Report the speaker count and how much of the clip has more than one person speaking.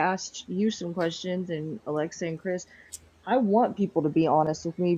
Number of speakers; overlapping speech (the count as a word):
one, no overlap